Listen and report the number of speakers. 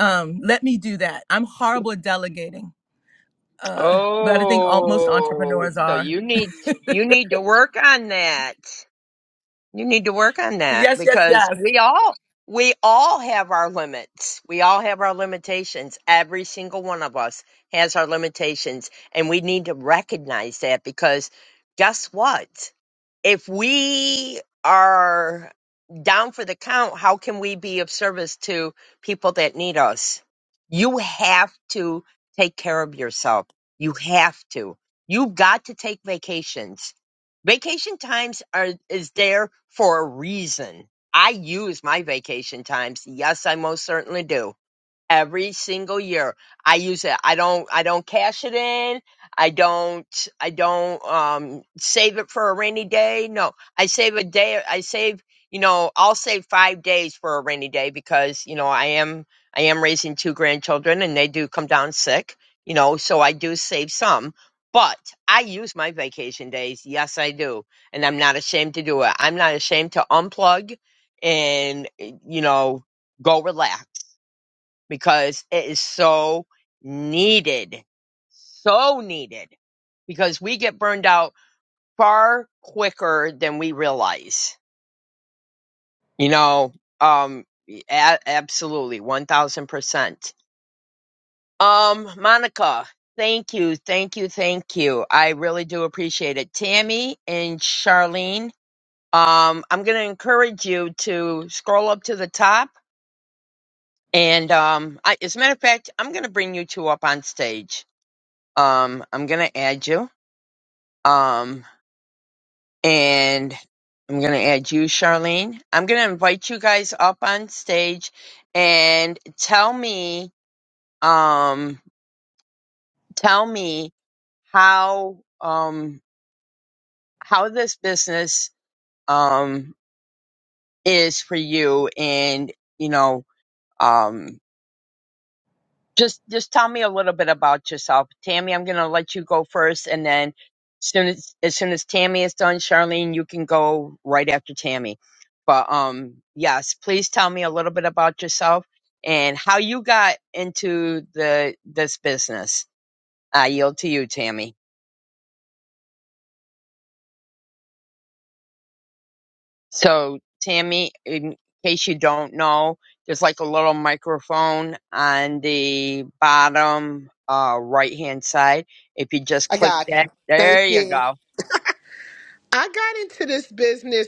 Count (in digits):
3